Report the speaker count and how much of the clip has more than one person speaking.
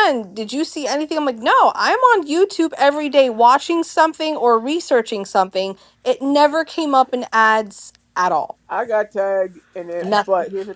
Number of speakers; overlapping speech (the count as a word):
two, about 2%